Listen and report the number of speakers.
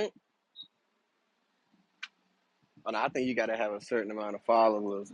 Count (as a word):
one